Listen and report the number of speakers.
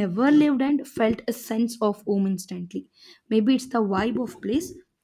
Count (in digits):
1